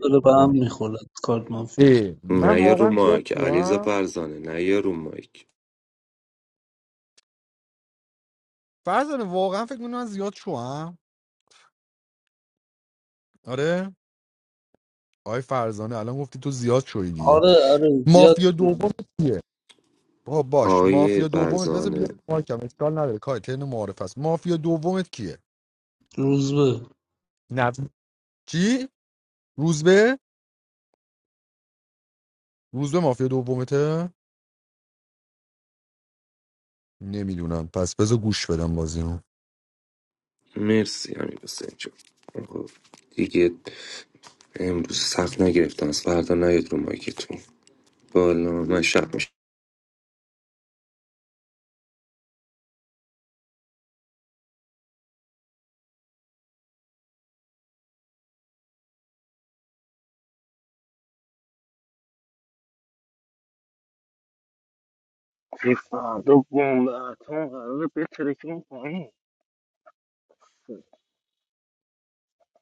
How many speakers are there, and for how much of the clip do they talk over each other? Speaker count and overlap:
4, about 6%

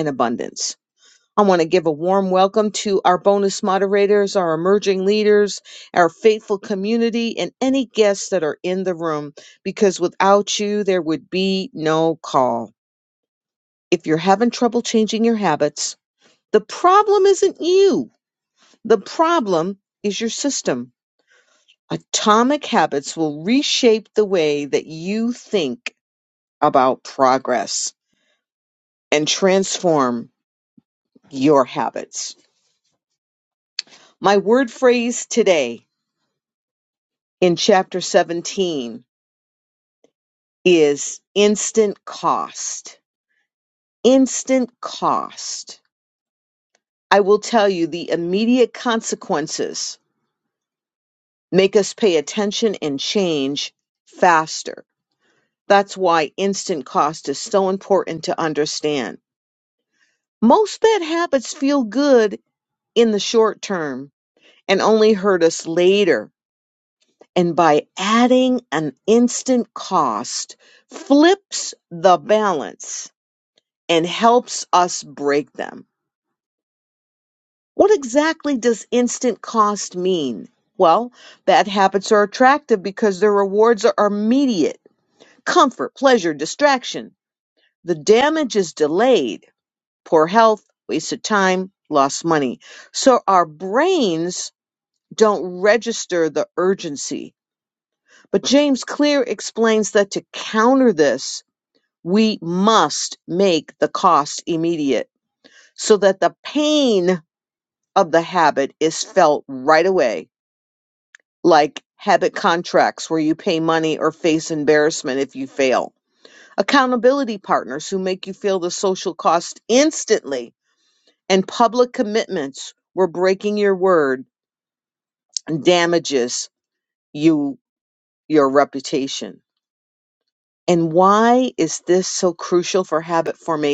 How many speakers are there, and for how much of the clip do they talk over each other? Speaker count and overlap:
1, no overlap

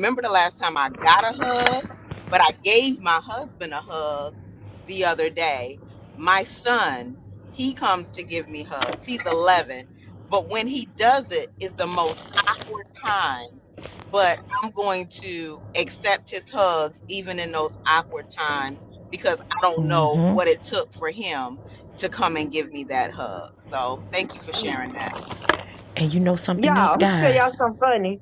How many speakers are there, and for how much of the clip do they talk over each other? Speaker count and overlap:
3, about 6%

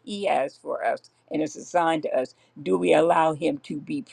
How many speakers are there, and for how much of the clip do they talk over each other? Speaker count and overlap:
1, no overlap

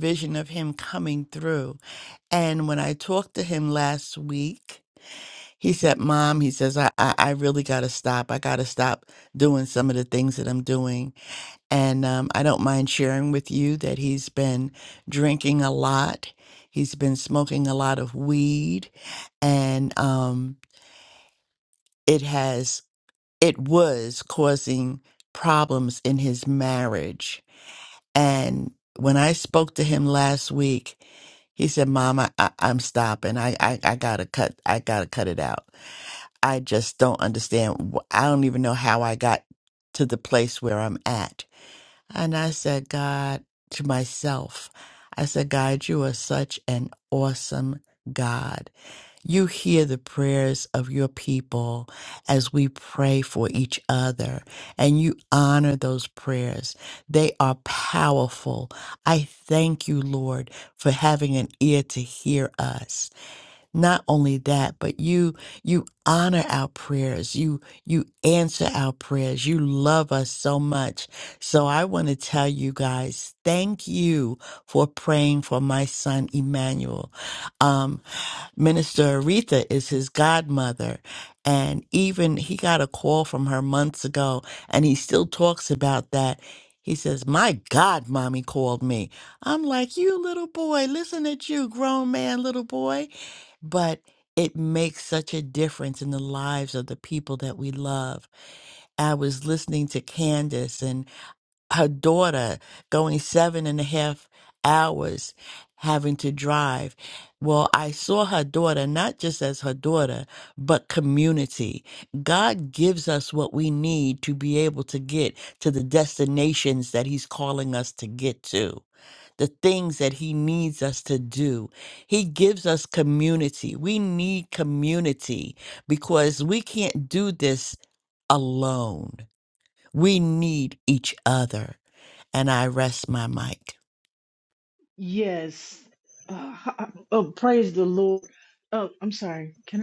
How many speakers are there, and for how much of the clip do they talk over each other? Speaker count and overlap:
2, no overlap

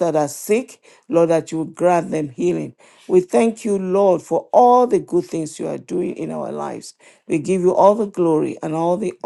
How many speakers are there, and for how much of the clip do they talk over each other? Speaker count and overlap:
1, no overlap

